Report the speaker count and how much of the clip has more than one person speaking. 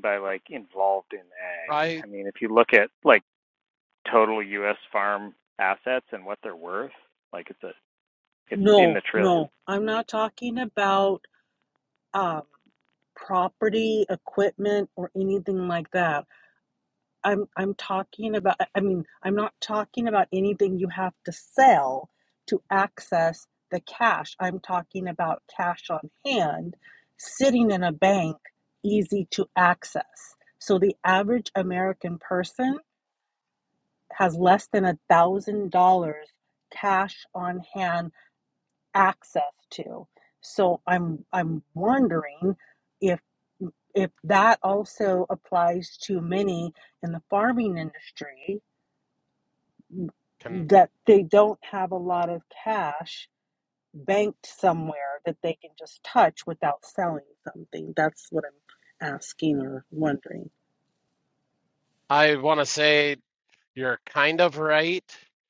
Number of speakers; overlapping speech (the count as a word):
three, about 2%